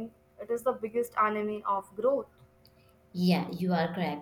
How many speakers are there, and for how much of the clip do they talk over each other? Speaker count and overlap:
2, no overlap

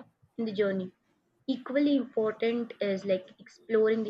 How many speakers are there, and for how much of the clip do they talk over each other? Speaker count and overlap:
1, no overlap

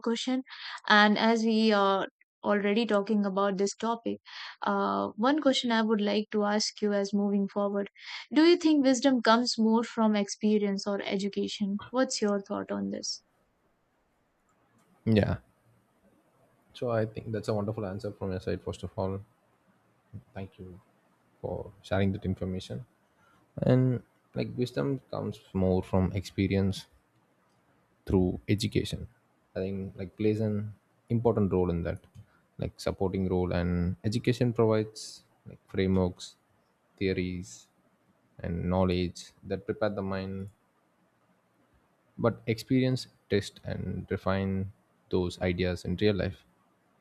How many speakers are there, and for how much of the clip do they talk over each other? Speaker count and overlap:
2, no overlap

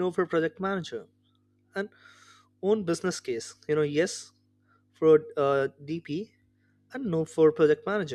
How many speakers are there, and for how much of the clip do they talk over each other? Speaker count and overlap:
1, no overlap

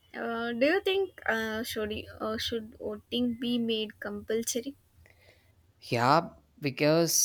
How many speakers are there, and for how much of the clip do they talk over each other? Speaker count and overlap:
2, no overlap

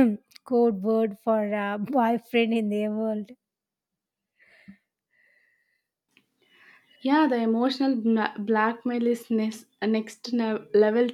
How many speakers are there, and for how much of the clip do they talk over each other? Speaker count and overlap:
2, no overlap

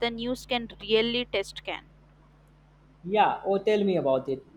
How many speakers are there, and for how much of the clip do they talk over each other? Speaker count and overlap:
2, no overlap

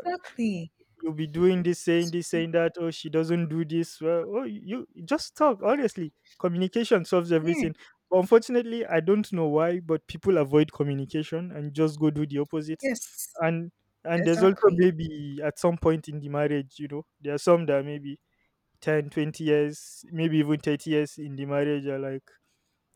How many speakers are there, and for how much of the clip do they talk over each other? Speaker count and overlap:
2, about 4%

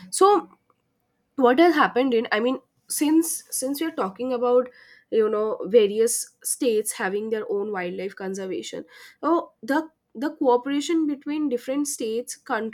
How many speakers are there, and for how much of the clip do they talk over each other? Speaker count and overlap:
1, no overlap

